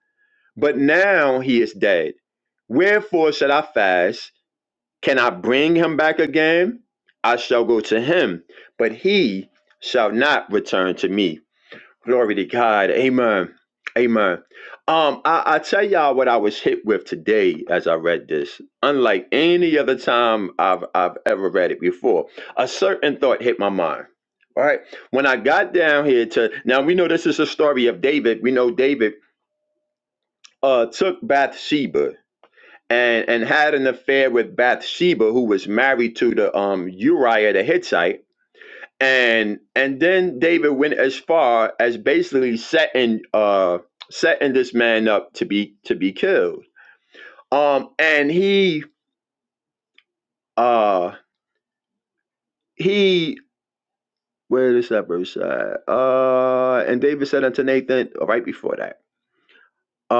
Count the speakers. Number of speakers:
one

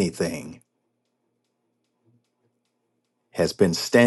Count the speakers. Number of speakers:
one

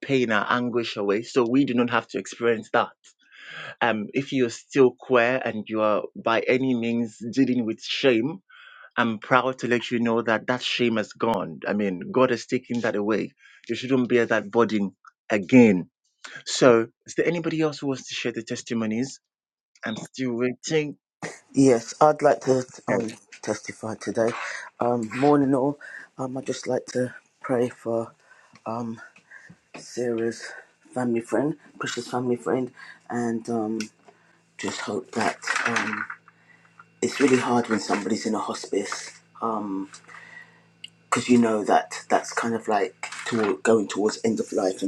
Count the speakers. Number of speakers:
two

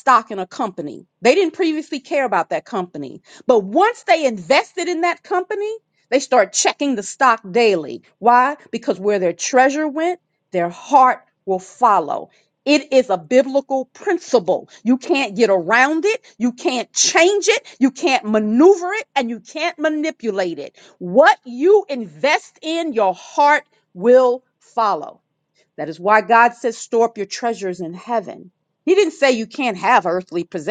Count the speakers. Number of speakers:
one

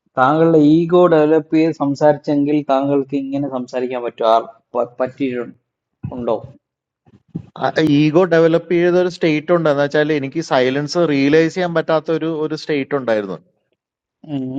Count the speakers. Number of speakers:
two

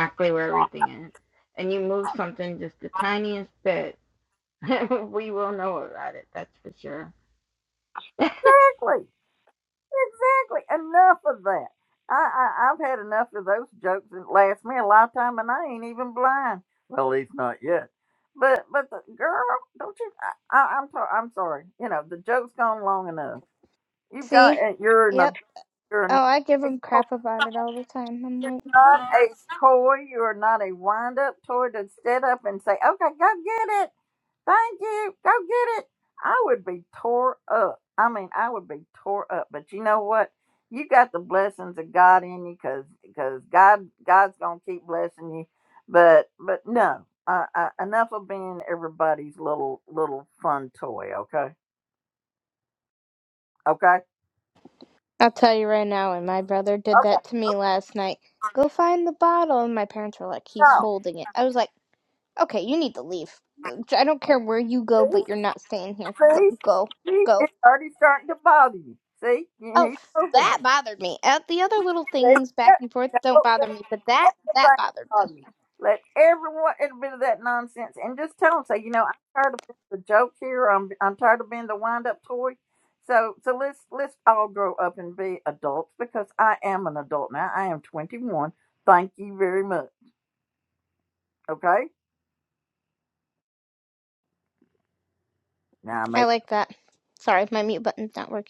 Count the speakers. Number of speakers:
three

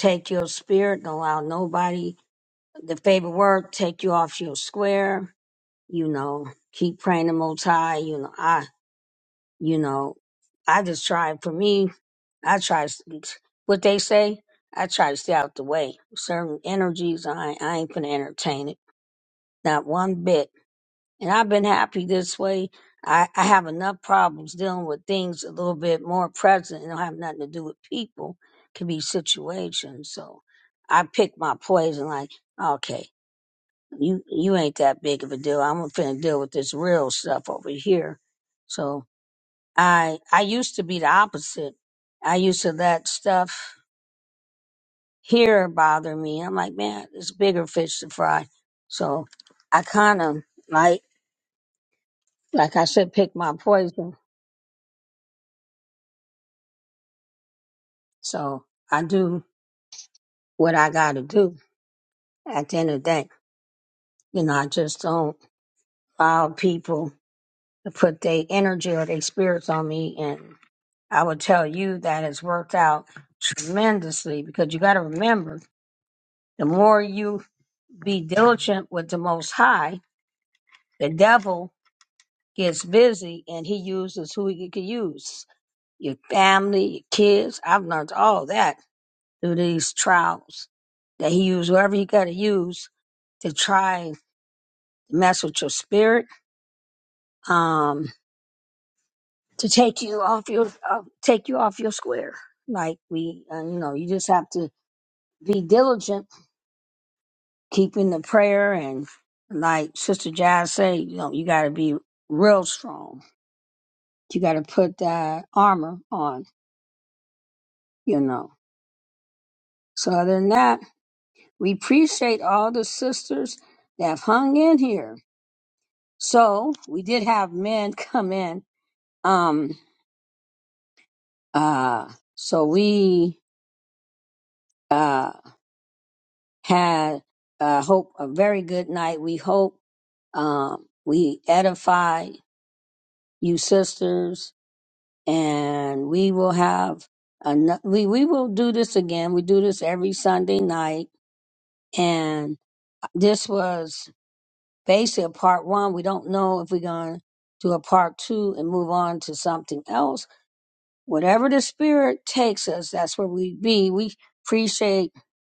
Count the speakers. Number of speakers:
one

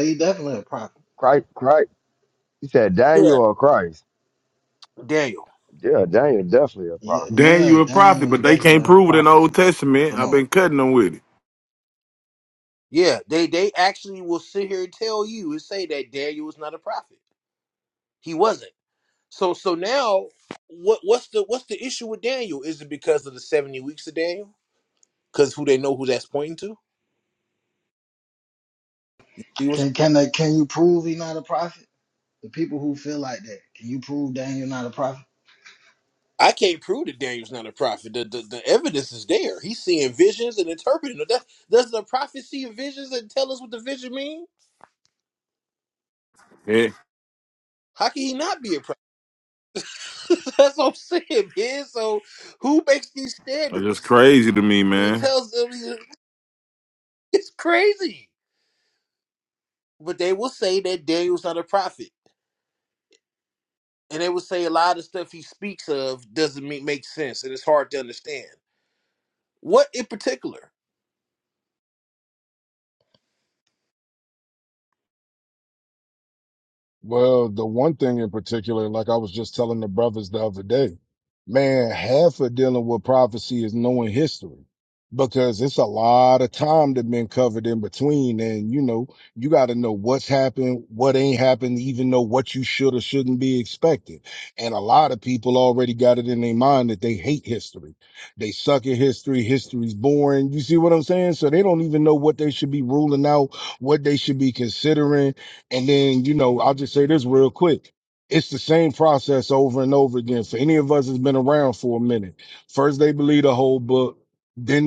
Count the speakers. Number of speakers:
five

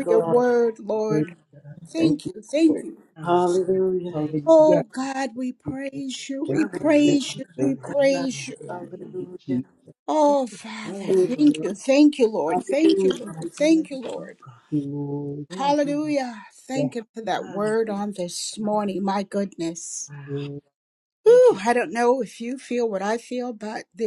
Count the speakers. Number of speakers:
three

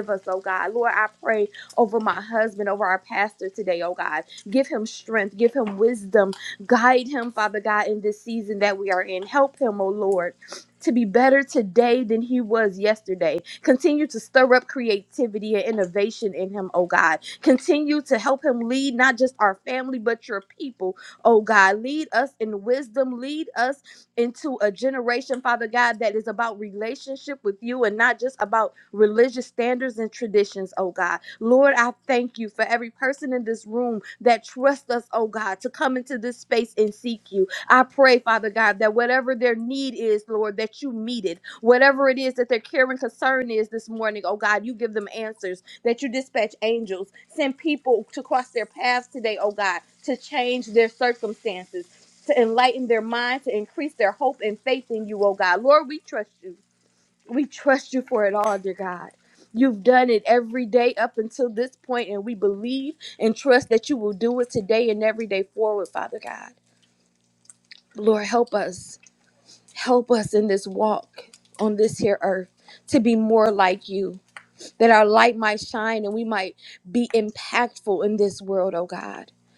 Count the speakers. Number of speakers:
one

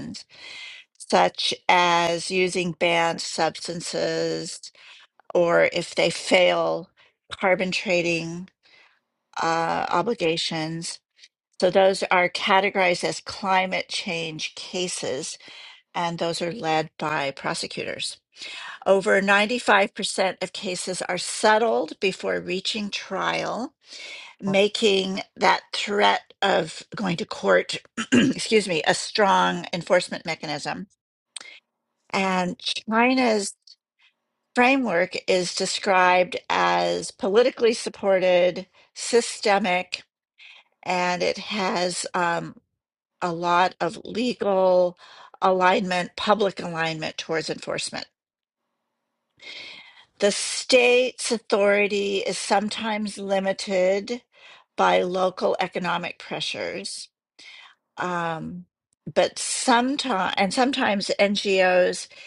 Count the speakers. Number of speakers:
one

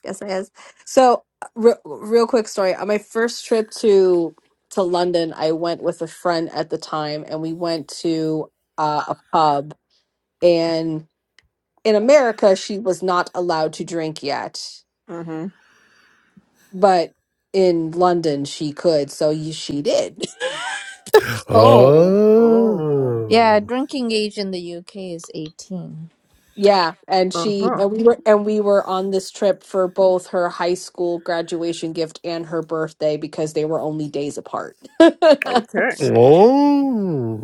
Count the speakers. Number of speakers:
four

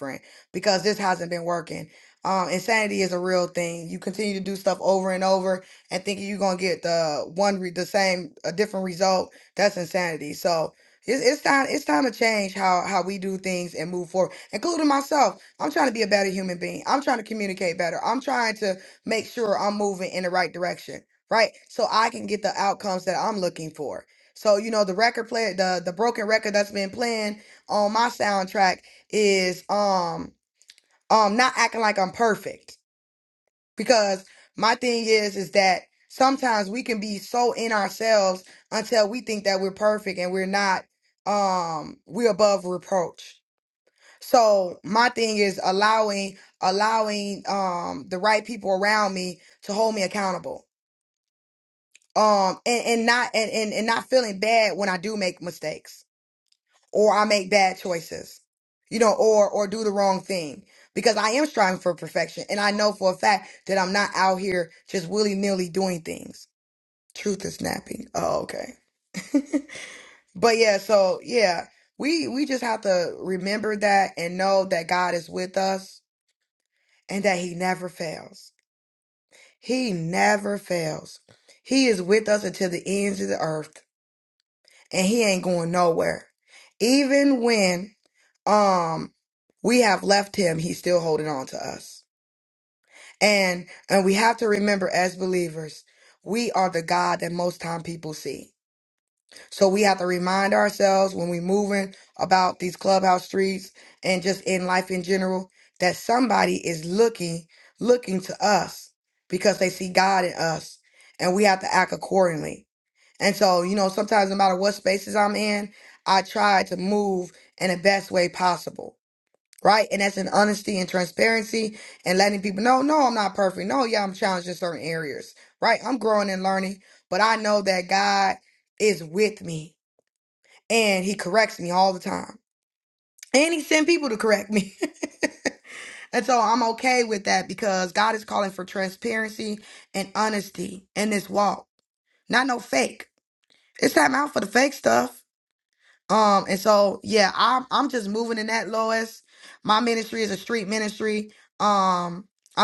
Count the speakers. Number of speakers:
one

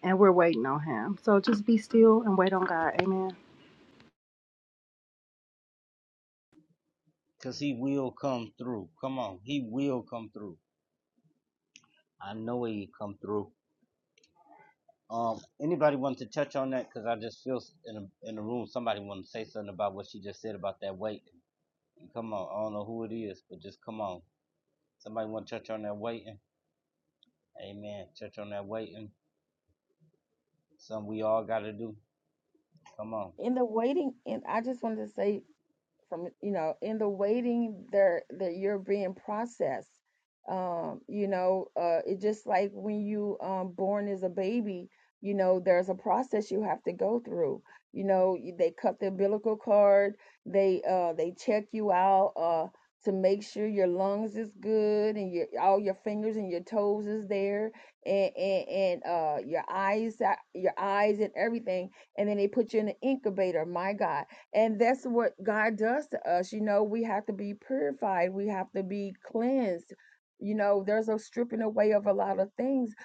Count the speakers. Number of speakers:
three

